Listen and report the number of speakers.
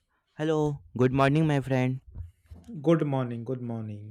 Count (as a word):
two